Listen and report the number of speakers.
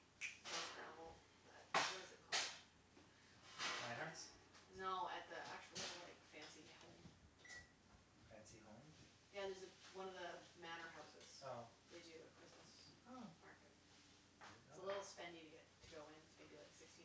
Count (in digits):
2